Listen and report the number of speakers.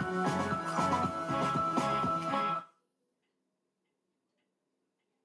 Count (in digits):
0